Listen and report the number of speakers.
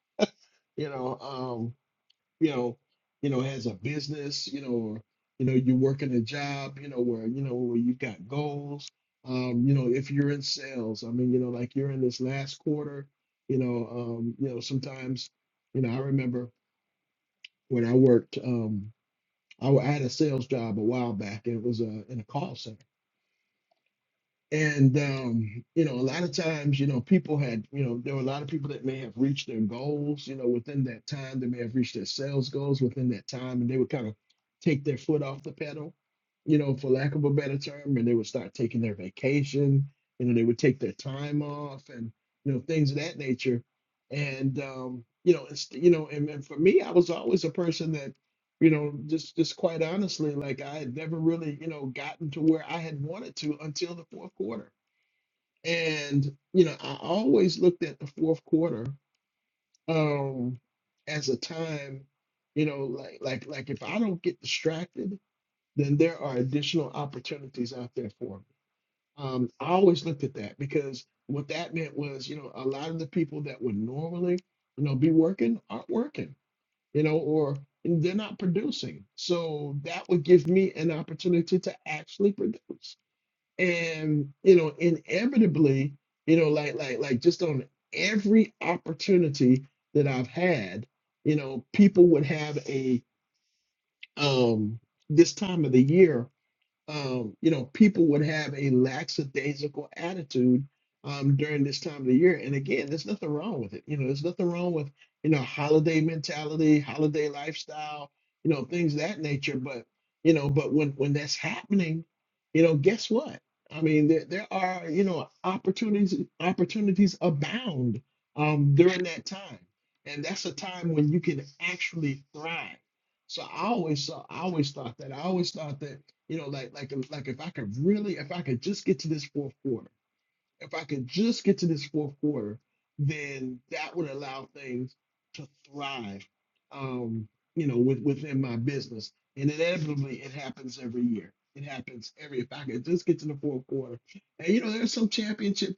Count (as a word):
one